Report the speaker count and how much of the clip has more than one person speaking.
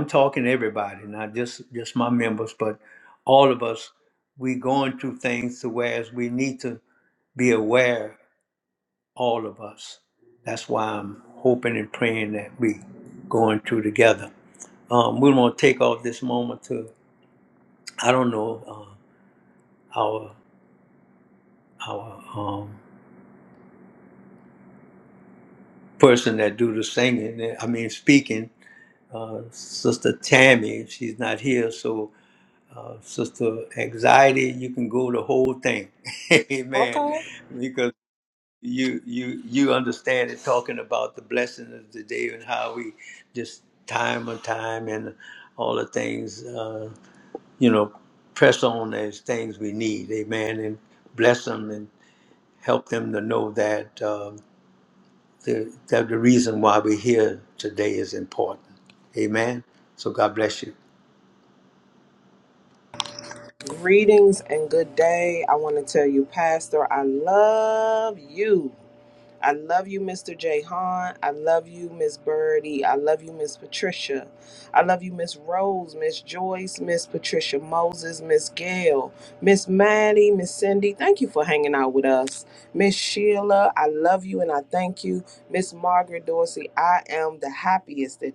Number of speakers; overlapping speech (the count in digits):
2, under 1%